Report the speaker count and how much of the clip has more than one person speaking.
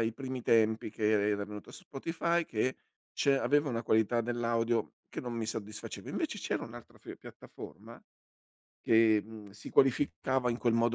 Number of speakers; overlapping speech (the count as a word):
one, no overlap